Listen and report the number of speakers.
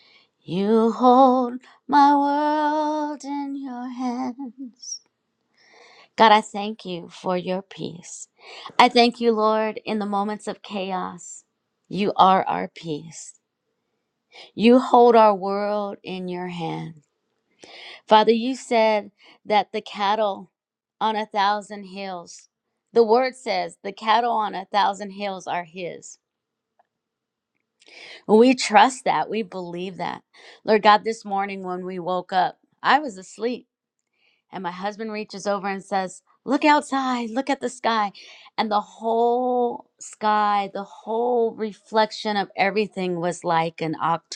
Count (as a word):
one